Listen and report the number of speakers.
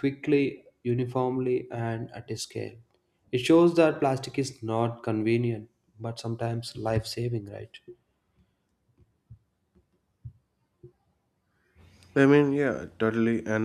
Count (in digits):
2